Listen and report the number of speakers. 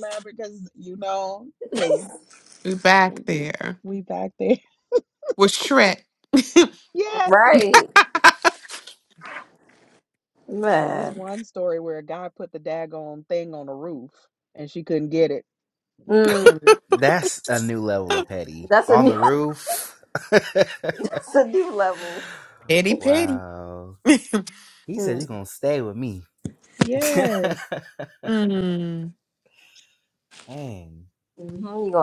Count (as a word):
four